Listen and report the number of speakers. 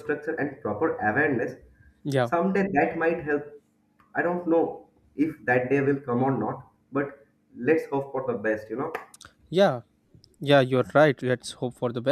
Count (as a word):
two